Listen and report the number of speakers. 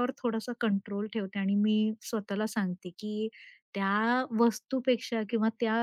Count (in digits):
1